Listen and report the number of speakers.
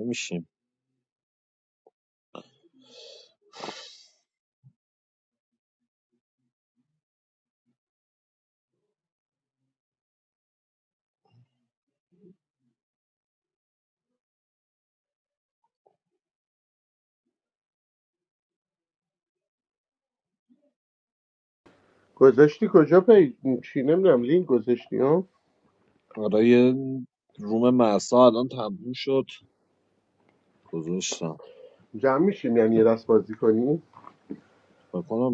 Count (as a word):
two